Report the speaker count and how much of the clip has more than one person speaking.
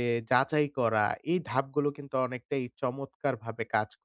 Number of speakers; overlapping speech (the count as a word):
one, no overlap